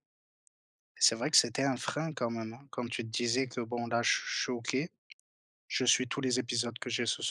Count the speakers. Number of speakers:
1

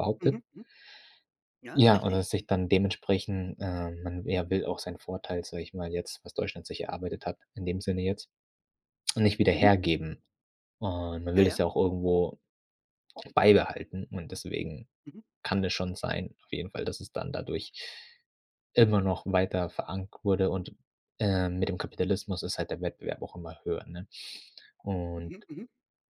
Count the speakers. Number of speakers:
2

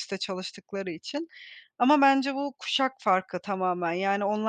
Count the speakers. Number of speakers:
1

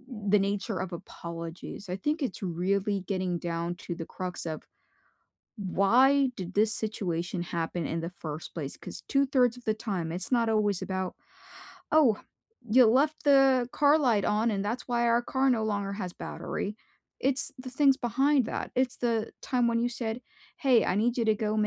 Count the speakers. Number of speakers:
1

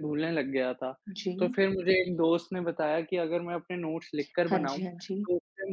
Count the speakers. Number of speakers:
2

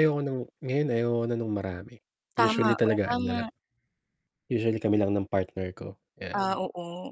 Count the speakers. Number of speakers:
2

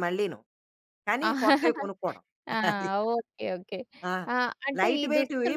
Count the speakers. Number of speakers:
2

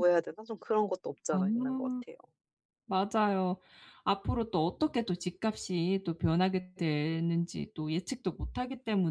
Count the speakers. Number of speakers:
2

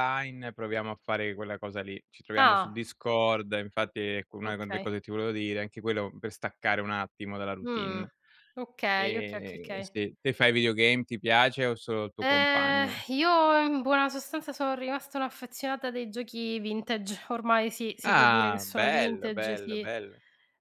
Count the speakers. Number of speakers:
2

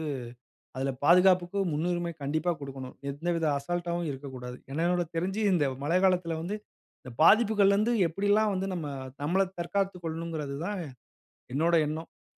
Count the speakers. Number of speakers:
1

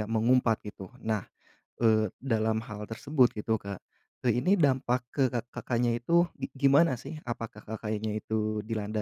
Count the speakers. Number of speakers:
1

